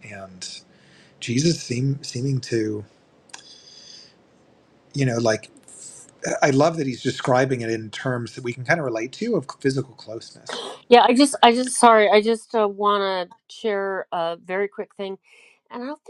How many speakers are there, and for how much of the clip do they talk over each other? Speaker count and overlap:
2, no overlap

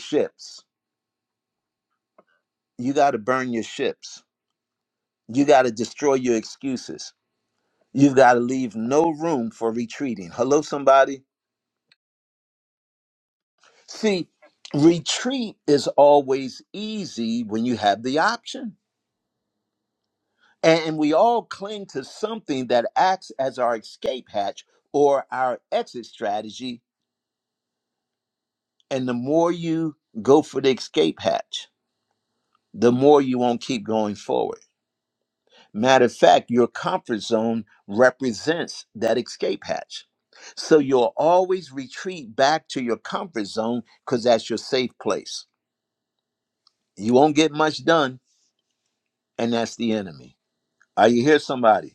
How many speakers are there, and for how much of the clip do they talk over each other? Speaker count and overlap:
1, no overlap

